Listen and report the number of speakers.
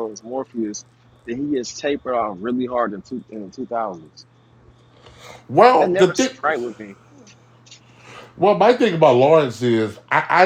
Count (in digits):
2